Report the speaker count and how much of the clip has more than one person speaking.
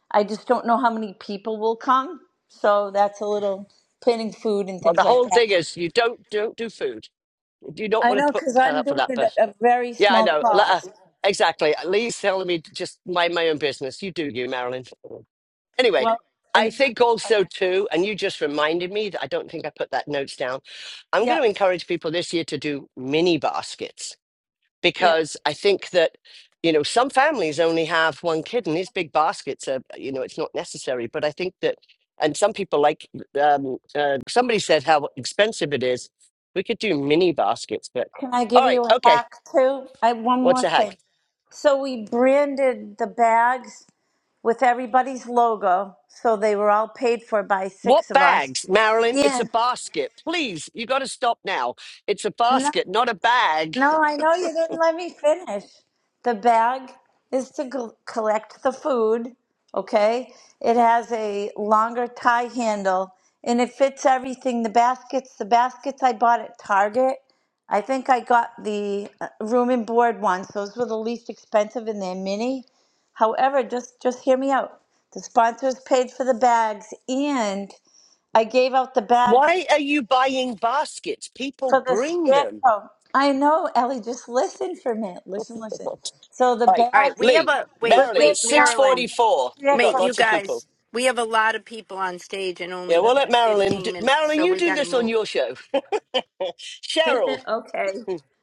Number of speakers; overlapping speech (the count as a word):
three, about 12%